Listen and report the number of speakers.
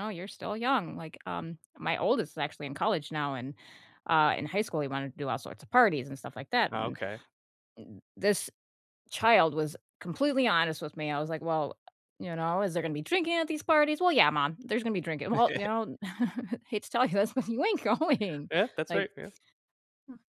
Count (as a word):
two